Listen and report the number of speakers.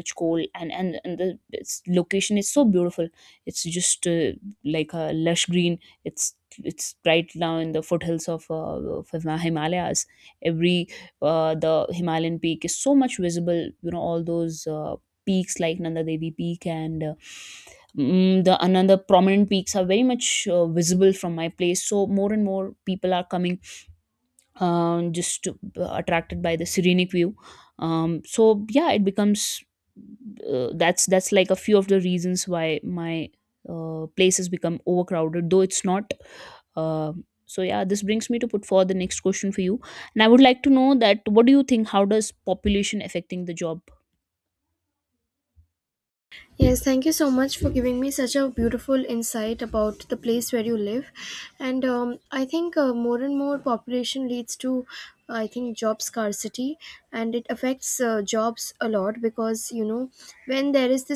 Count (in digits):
2